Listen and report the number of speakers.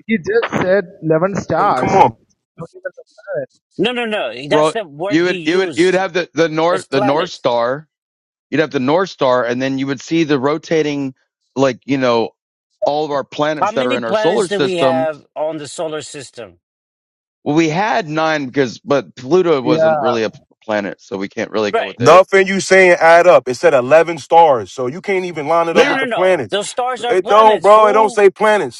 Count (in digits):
4